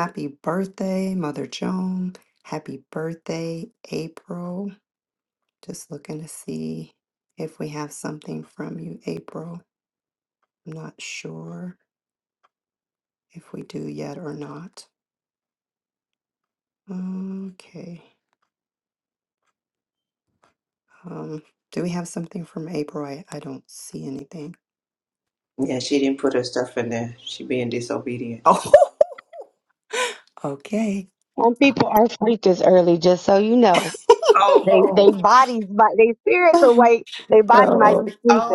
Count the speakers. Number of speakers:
3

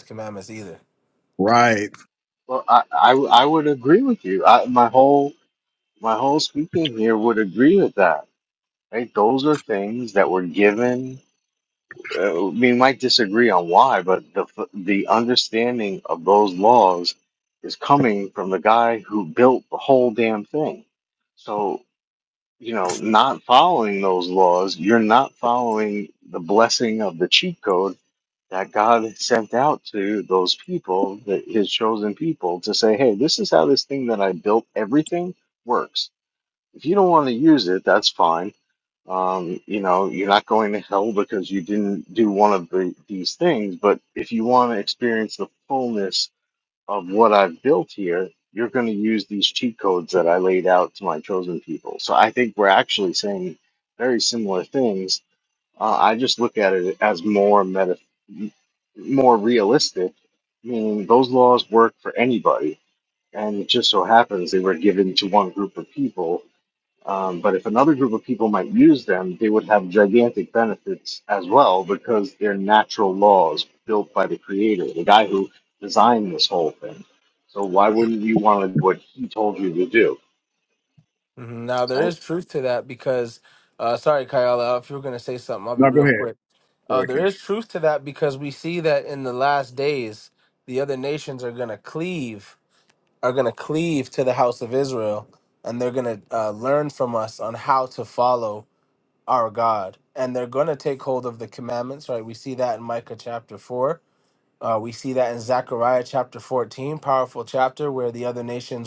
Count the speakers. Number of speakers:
3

